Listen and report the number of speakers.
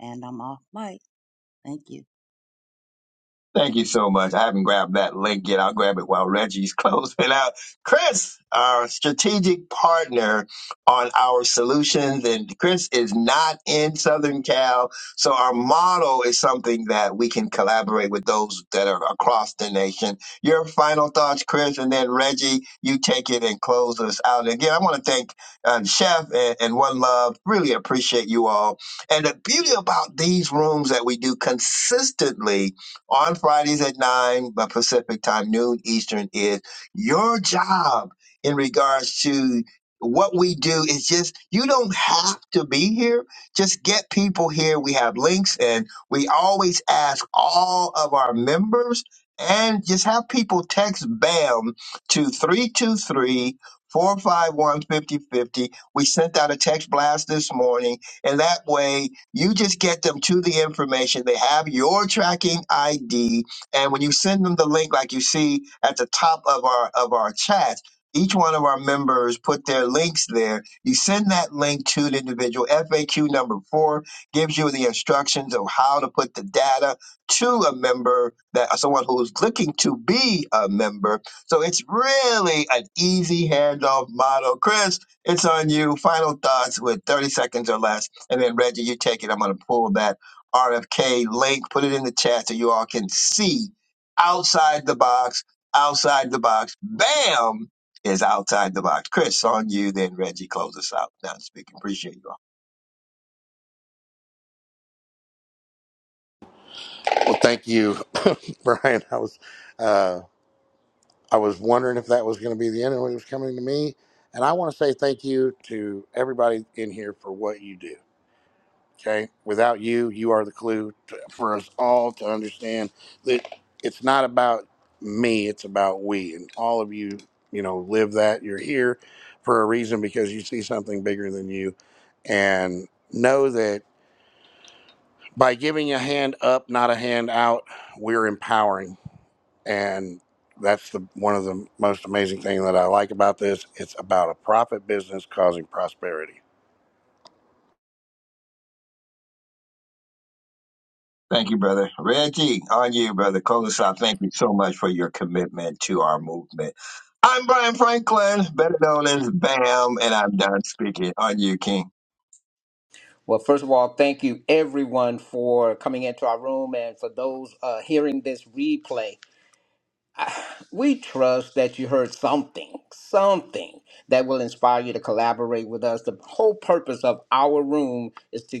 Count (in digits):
4